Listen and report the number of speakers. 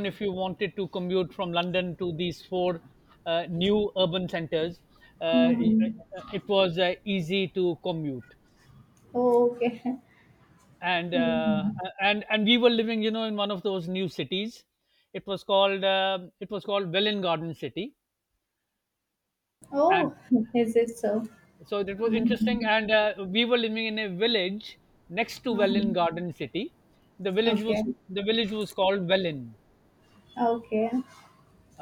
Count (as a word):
two